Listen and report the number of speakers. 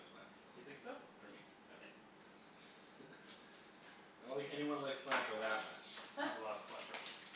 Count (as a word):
two